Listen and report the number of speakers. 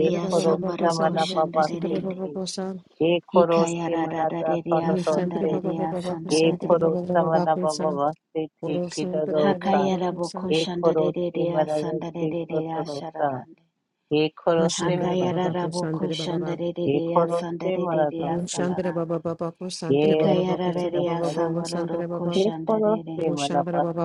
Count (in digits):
3